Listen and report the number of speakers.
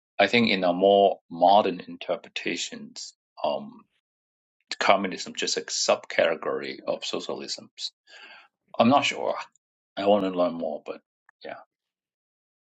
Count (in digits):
1